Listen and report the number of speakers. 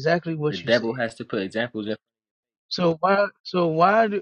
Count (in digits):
2